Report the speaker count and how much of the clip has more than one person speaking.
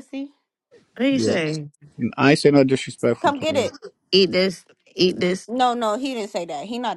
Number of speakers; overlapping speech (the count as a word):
three, about 11%